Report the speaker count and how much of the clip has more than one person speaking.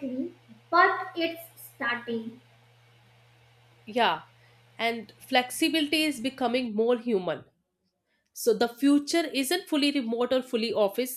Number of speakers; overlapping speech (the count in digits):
2, no overlap